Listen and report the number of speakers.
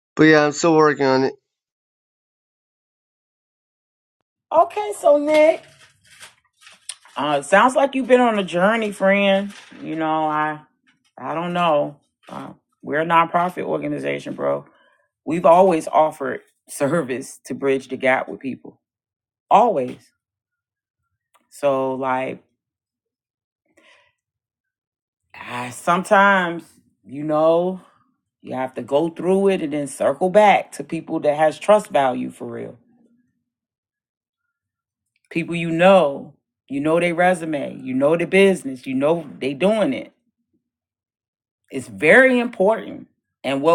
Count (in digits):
2